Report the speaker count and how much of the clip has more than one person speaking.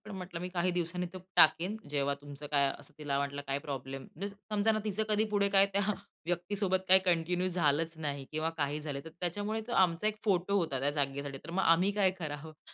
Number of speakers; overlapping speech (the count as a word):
one, no overlap